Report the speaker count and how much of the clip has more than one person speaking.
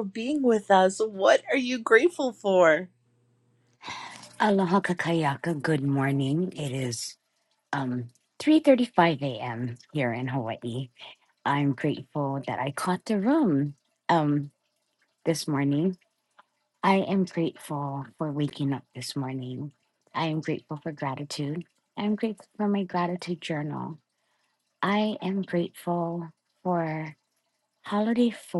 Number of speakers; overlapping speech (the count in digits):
2, no overlap